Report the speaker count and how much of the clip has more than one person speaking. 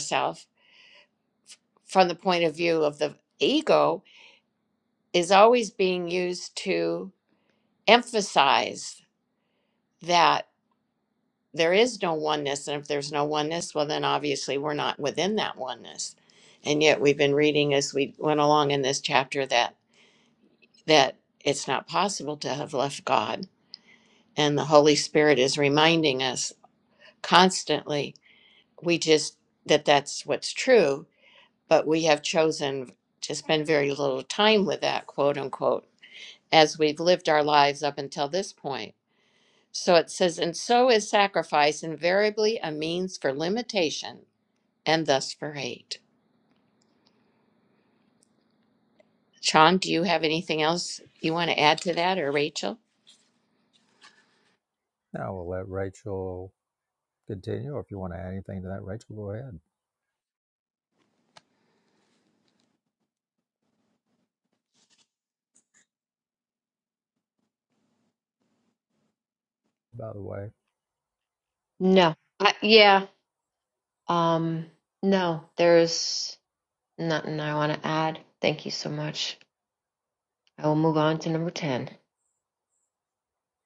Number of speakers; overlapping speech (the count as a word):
three, no overlap